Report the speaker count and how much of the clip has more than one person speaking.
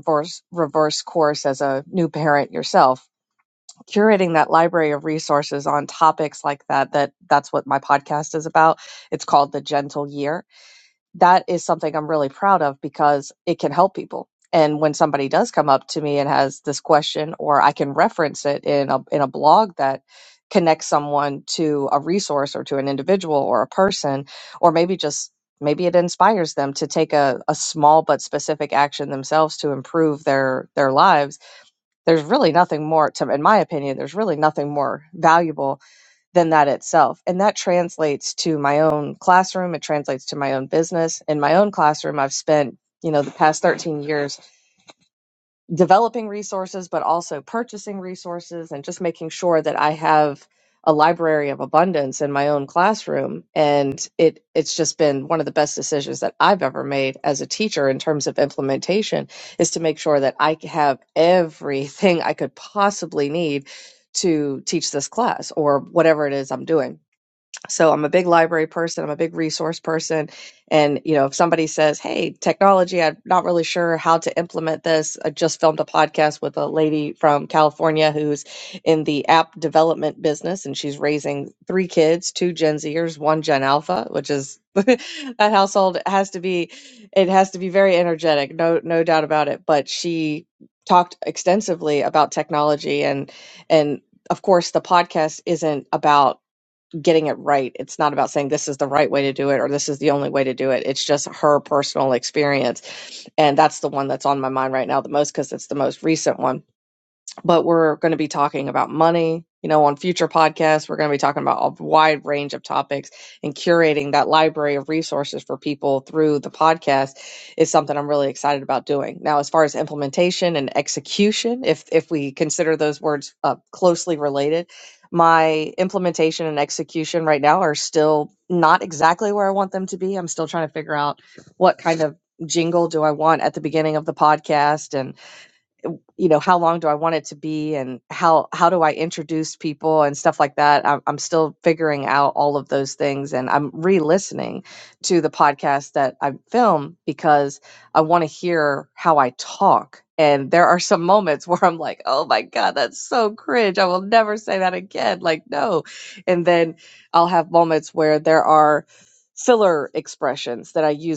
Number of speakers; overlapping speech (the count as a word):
one, no overlap